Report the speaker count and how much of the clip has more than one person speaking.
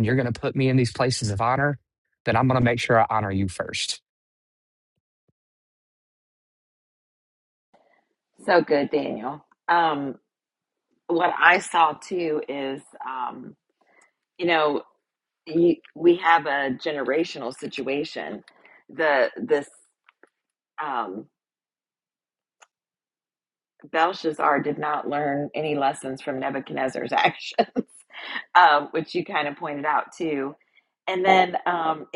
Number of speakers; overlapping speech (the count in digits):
2, no overlap